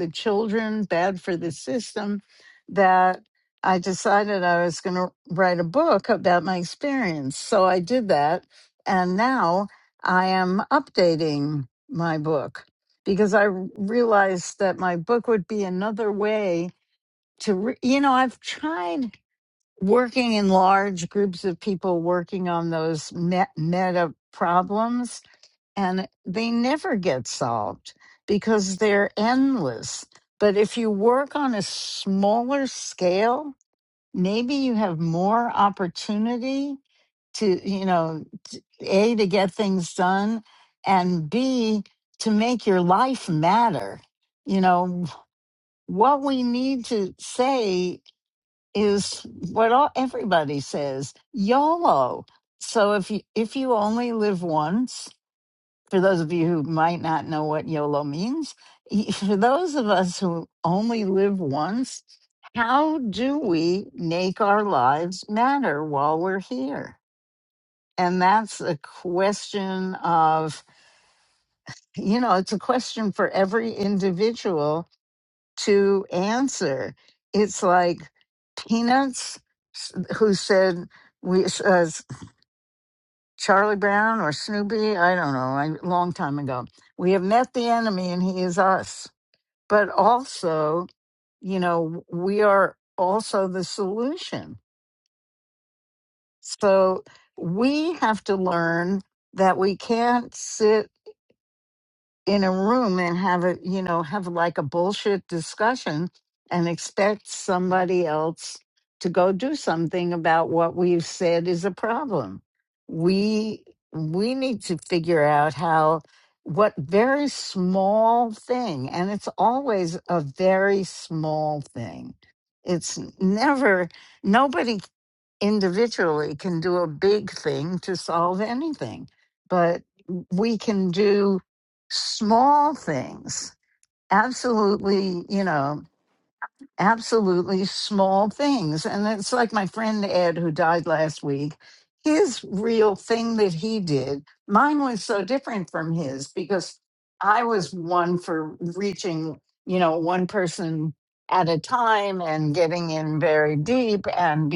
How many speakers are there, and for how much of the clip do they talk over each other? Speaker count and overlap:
1, no overlap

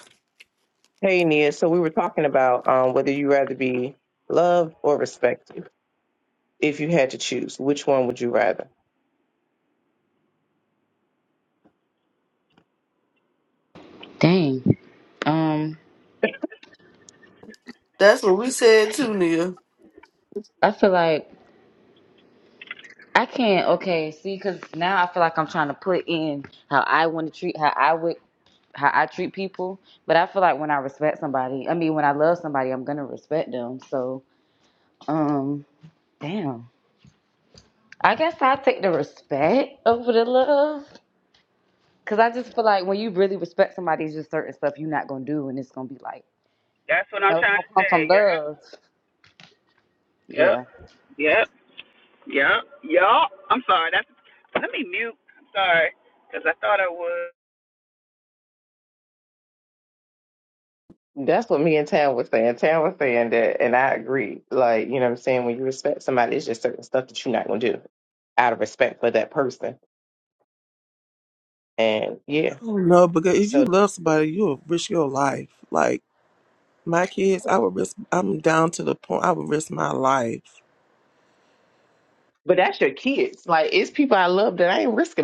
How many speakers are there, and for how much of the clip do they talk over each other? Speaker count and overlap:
5, about 2%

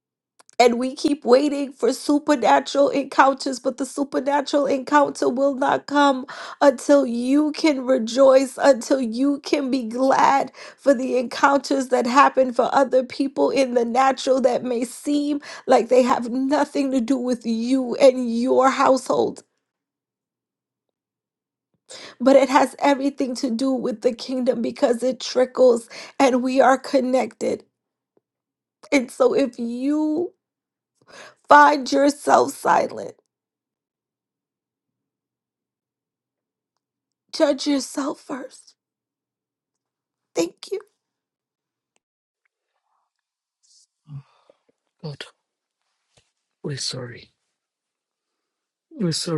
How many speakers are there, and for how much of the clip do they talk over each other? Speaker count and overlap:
2, no overlap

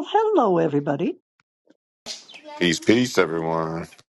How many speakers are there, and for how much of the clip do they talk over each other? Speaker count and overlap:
2, no overlap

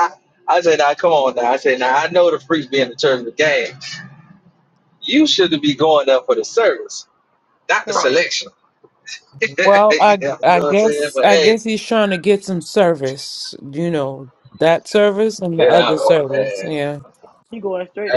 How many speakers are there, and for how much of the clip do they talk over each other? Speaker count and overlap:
3, about 14%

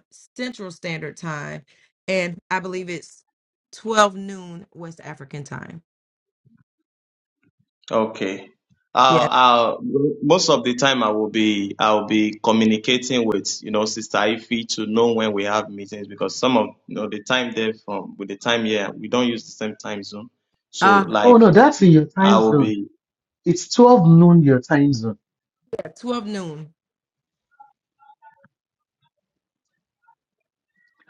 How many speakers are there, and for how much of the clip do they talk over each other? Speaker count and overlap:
3, about 3%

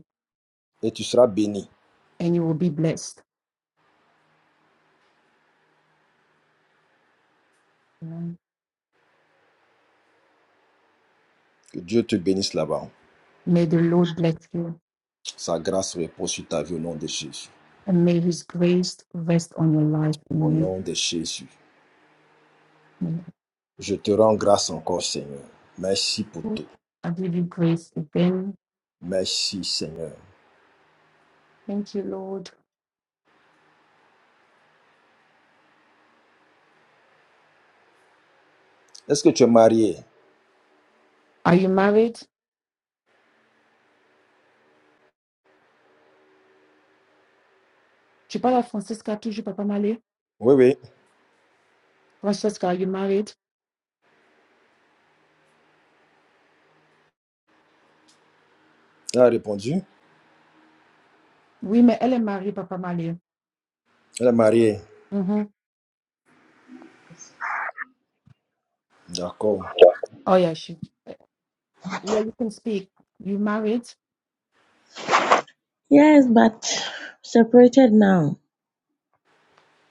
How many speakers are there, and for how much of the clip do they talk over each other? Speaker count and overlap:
3, about 1%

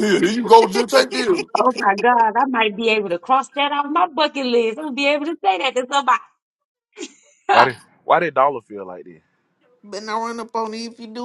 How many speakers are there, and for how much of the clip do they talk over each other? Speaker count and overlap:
4, no overlap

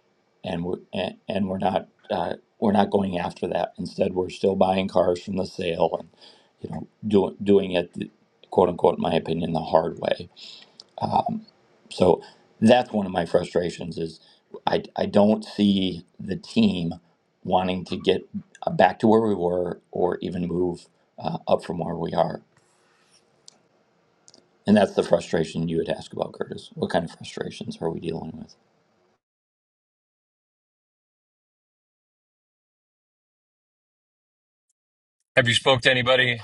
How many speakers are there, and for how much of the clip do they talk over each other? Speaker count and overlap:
2, no overlap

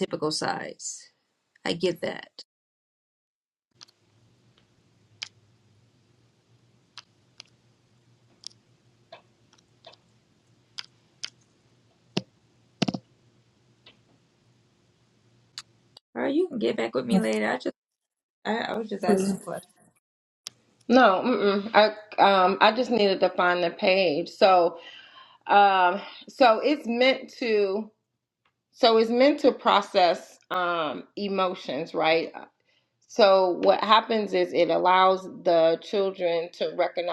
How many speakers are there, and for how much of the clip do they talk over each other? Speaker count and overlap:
2, no overlap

